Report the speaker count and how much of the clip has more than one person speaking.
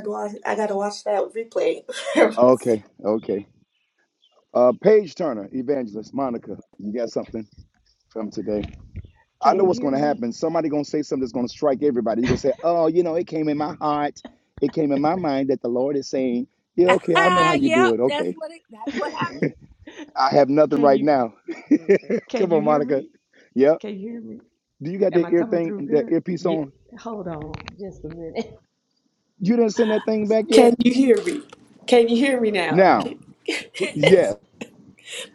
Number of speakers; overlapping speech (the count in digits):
4, about 13%